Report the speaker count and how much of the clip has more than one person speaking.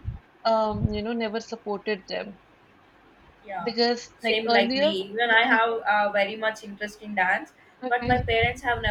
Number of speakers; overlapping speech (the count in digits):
2, about 19%